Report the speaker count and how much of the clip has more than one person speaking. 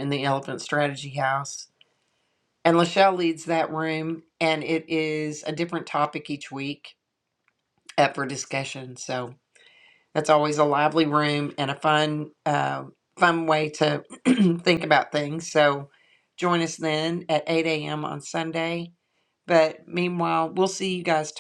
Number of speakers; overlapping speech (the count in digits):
1, no overlap